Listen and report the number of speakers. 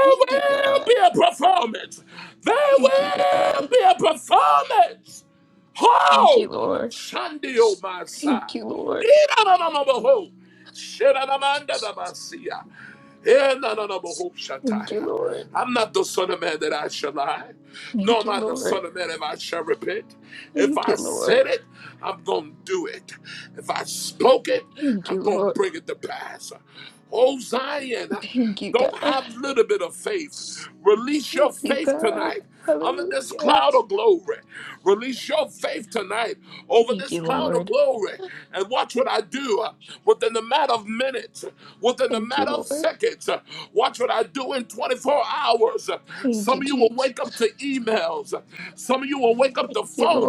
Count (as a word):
two